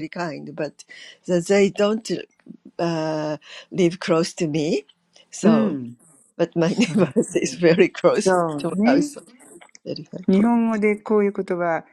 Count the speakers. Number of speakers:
two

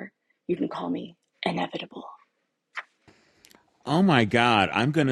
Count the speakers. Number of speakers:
two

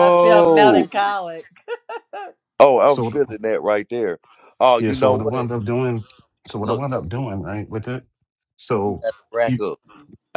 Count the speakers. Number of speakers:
three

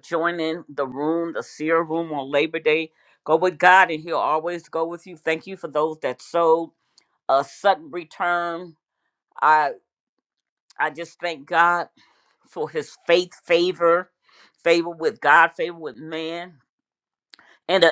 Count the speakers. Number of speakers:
one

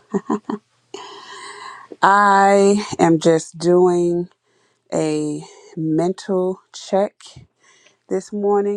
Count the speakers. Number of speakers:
one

